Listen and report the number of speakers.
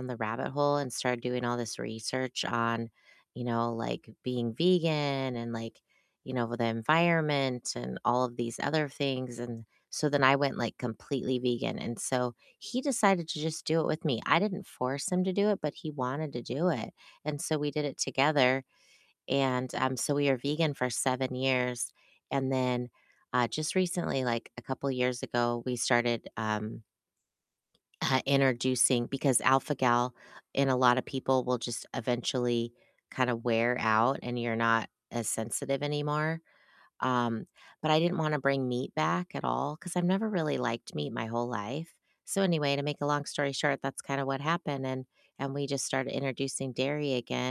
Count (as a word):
one